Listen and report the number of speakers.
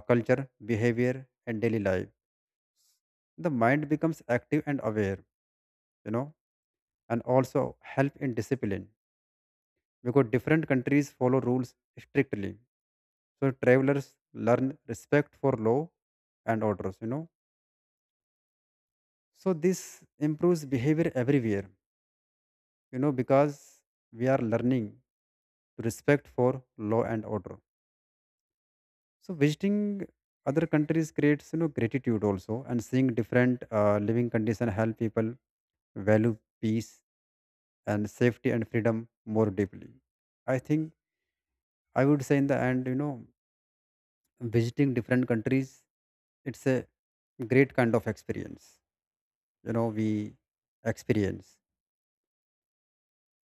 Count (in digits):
1